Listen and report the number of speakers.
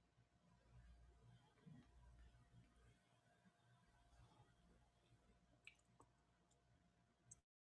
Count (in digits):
0